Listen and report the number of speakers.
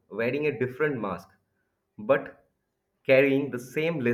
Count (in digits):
1